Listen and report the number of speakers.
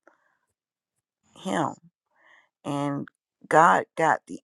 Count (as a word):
one